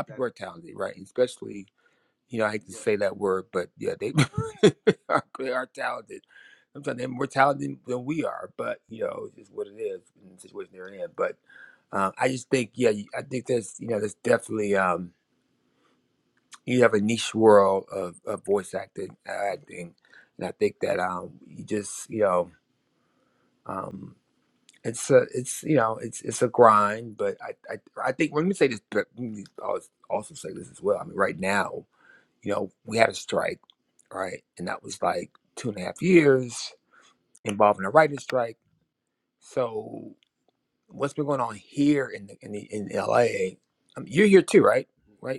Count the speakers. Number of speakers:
1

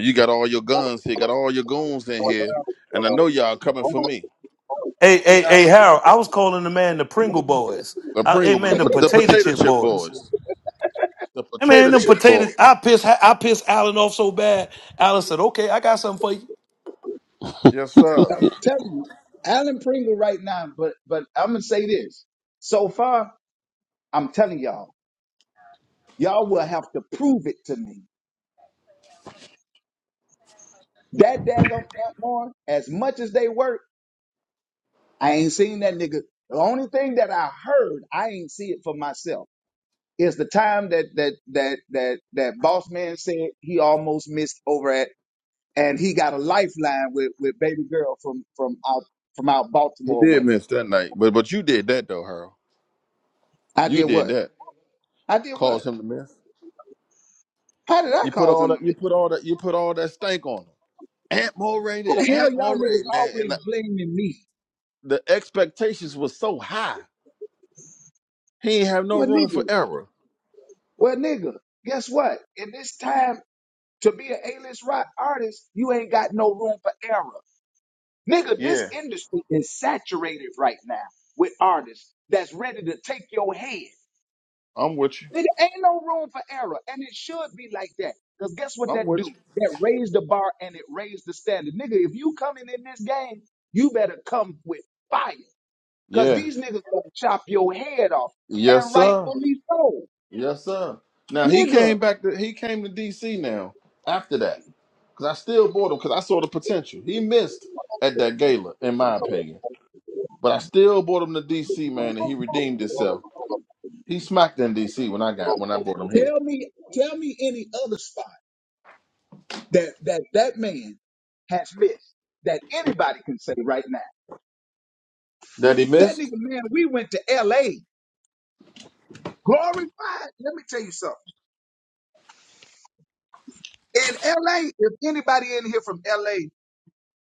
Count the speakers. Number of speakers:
3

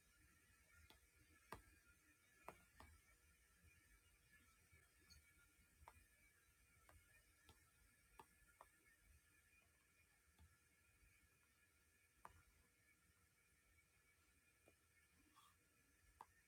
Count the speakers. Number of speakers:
0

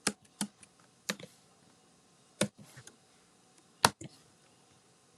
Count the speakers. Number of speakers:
0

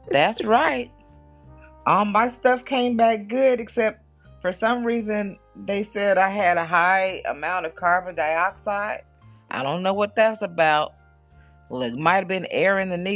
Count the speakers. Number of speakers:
1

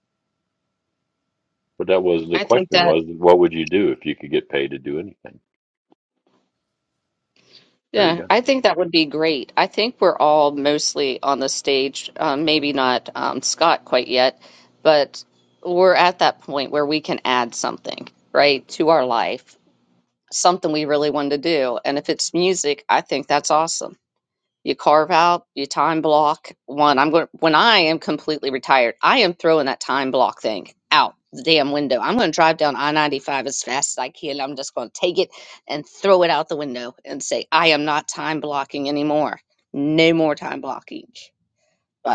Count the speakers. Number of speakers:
2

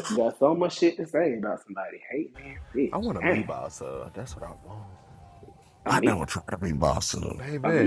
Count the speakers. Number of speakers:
3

